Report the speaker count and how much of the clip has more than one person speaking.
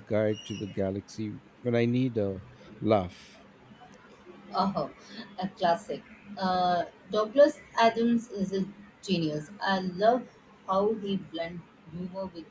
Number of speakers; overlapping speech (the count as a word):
two, no overlap